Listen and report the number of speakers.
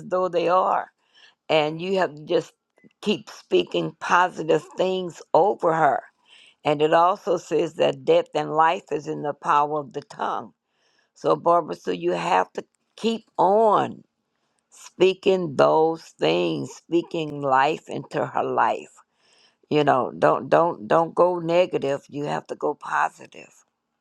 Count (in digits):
1